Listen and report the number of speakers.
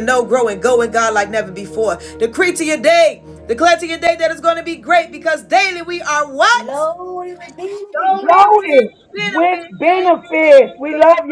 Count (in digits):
3